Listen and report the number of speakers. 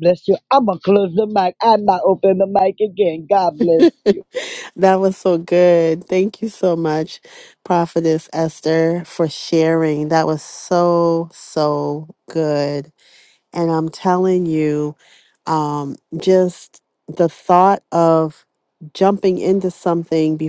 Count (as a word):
two